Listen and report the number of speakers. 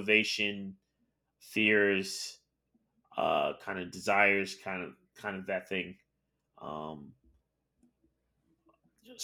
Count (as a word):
one